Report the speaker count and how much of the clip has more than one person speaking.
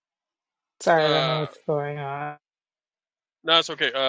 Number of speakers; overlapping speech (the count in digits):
2, about 14%